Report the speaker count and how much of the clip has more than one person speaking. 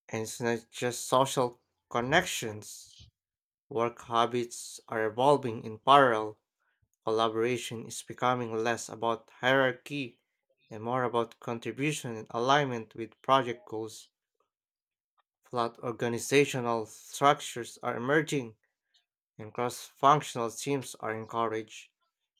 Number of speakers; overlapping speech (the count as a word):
one, no overlap